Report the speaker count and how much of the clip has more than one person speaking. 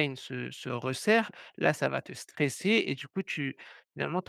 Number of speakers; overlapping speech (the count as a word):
one, no overlap